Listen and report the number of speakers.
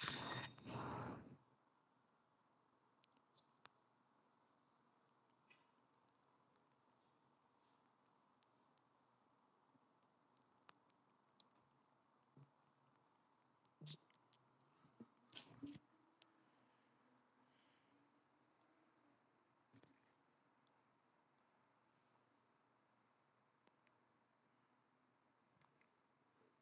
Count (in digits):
0